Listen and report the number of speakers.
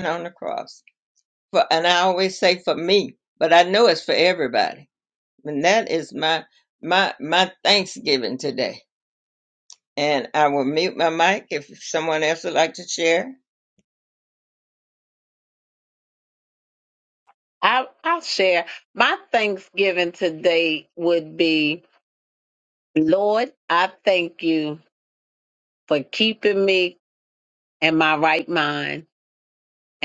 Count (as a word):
two